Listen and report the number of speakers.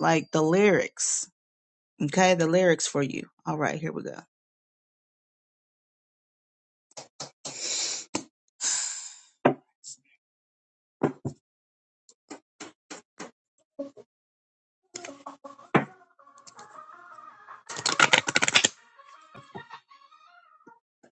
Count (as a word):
one